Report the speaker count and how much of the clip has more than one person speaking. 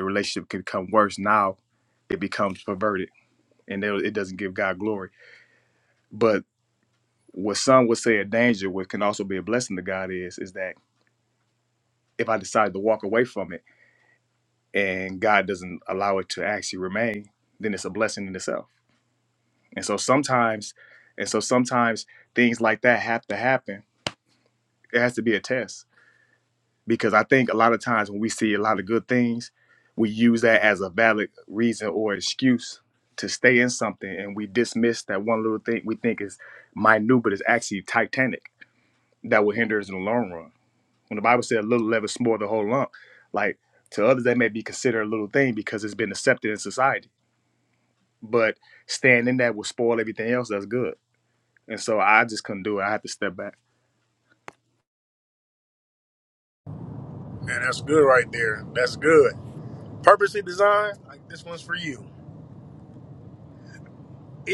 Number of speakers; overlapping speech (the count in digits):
2, no overlap